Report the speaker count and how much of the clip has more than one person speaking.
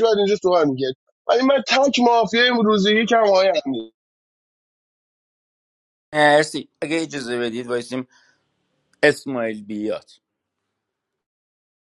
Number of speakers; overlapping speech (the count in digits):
2, no overlap